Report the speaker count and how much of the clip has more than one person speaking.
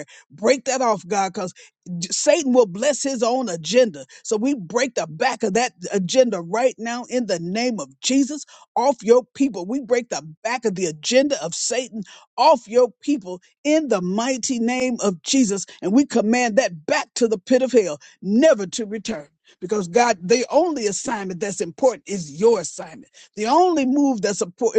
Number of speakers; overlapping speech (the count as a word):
one, no overlap